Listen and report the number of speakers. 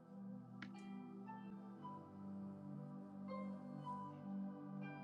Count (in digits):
0